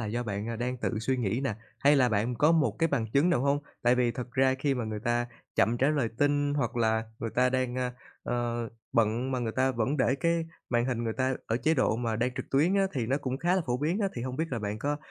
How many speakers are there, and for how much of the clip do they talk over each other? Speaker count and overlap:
1, no overlap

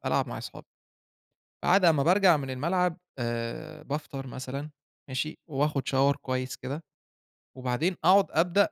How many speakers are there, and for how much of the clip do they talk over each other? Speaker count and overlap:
1, no overlap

